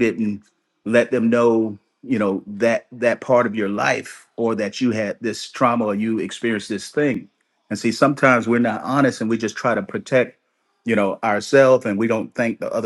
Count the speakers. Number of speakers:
one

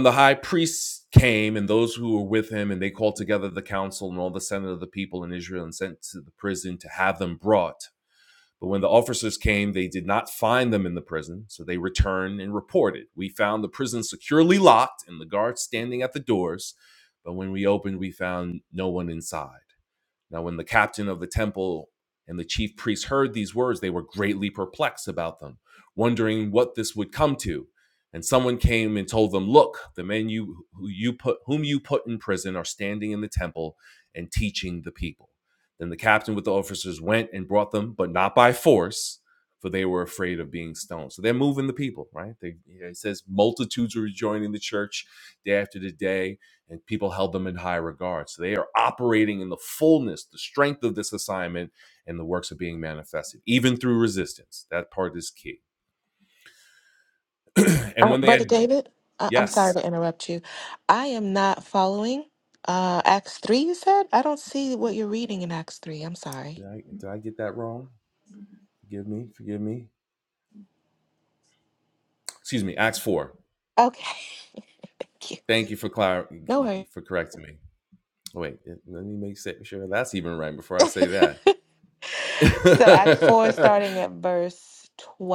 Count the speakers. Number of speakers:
two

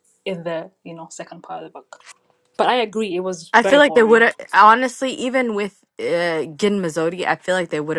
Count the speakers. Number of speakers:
two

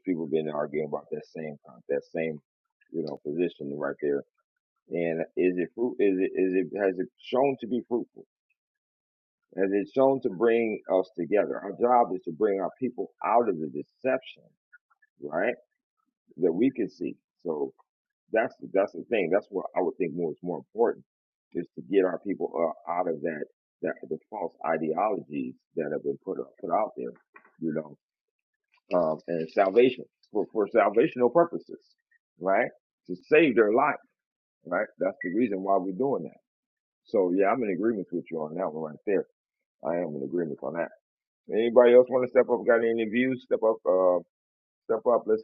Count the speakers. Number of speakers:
one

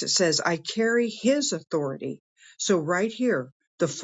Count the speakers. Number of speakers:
one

